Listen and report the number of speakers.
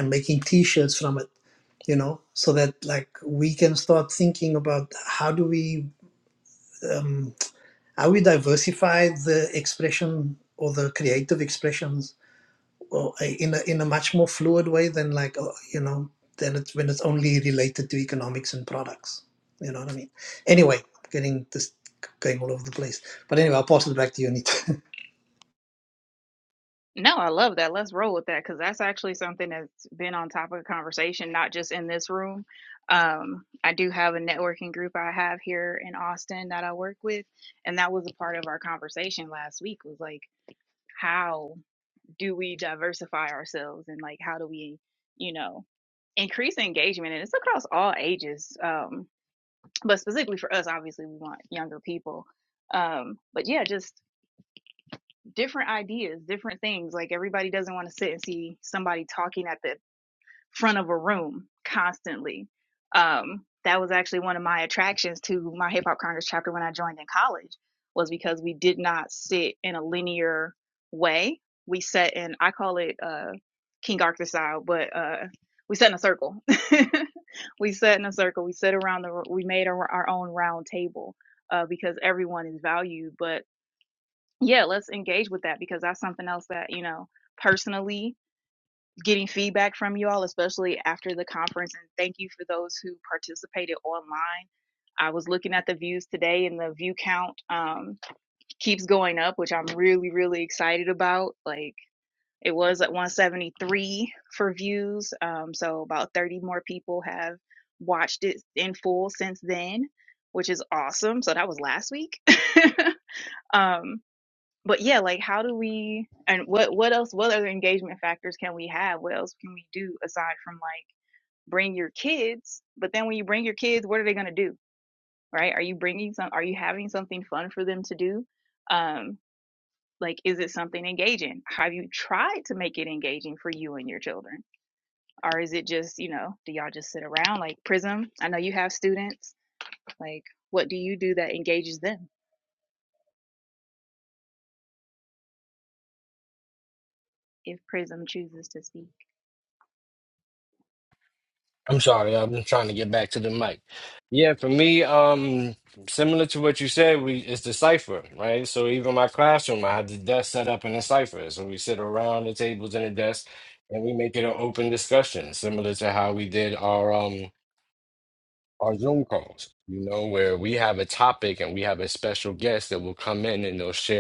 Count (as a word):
three